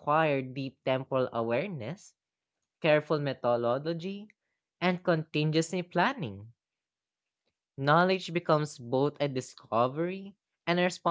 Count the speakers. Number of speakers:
1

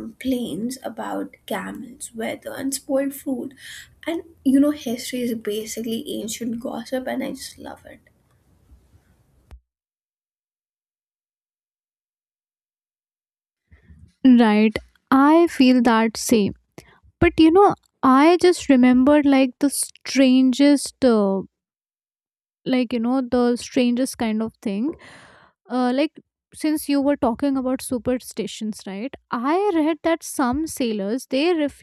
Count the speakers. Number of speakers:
2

